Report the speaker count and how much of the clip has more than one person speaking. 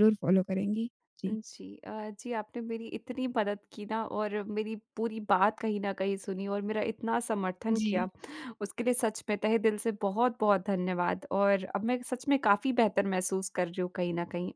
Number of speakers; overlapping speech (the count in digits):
2, about 3%